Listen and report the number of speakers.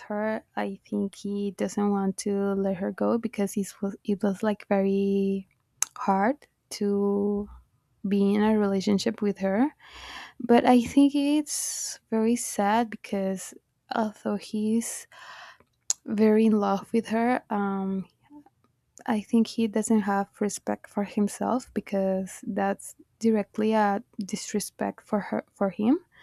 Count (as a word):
one